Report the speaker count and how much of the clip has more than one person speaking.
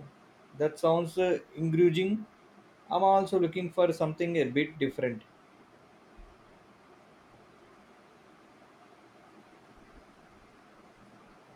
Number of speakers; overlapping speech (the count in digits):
1, no overlap